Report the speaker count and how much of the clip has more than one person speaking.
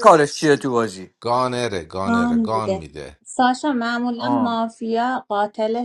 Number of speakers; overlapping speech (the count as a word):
three, about 18%